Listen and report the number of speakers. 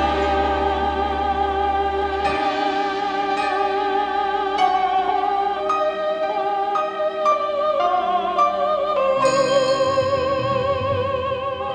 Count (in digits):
0